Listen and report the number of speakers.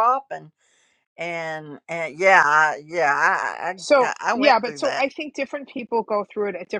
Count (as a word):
two